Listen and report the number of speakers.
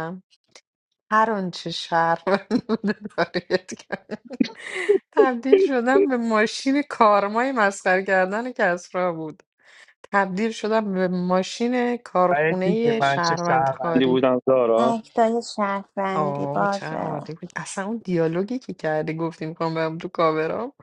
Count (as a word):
three